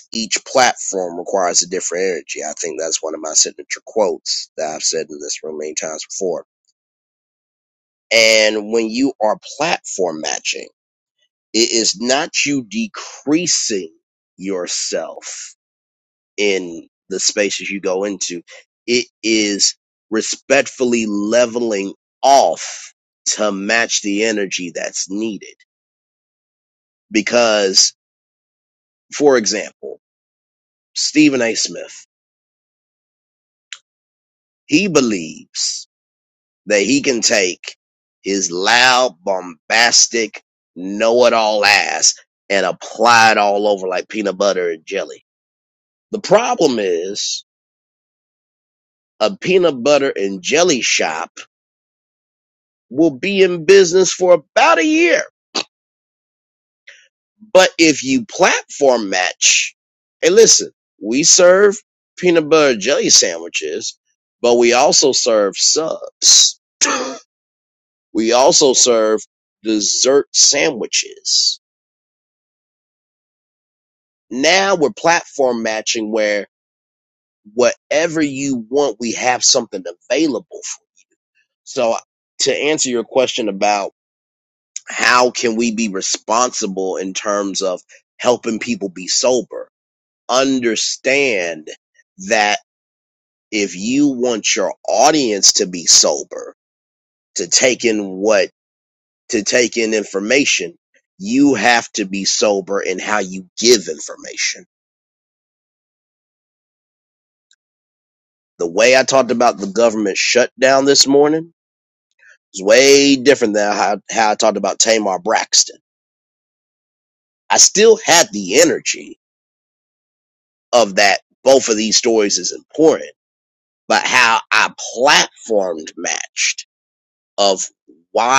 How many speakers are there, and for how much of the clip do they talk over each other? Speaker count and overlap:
1, no overlap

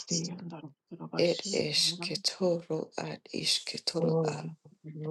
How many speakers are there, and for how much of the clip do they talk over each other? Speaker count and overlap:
2, about 16%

